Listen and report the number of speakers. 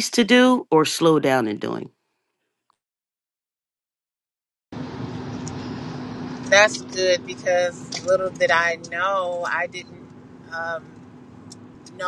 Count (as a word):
two